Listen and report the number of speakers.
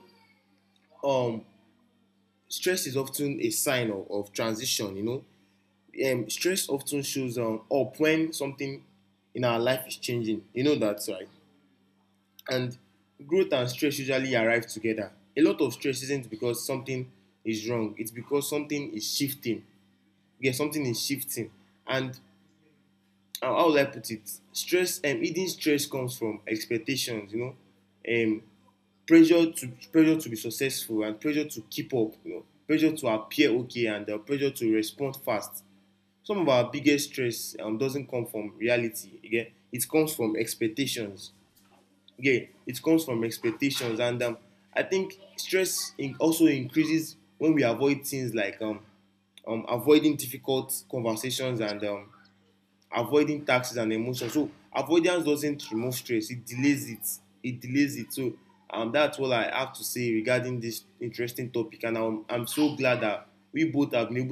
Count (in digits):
1